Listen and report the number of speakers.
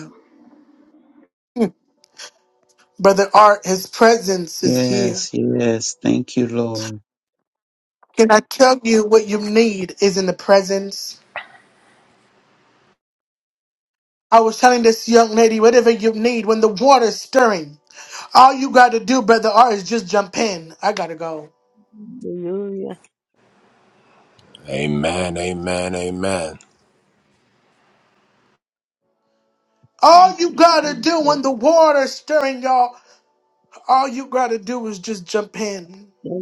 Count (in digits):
4